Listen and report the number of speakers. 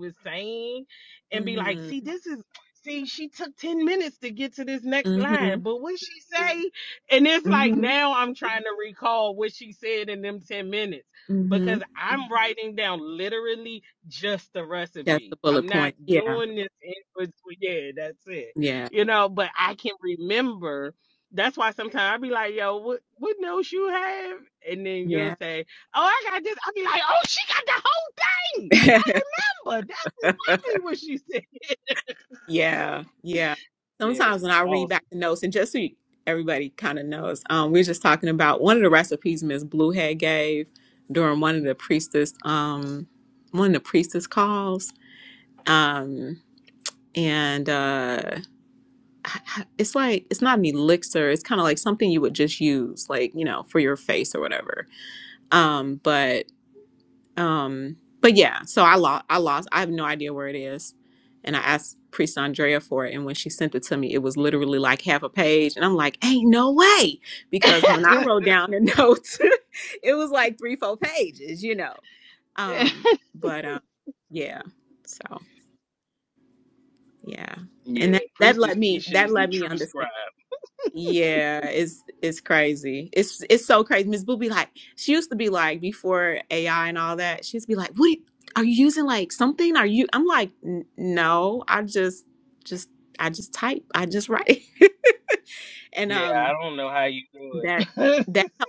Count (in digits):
2